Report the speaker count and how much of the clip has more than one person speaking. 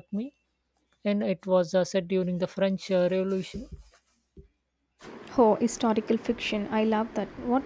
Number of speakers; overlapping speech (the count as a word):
two, no overlap